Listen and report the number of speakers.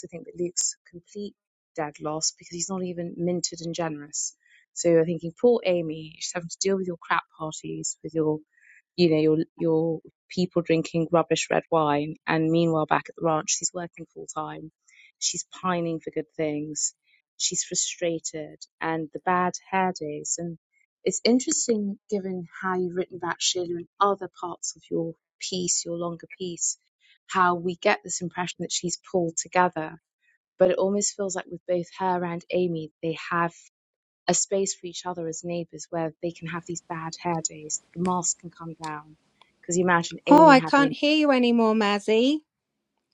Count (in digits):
2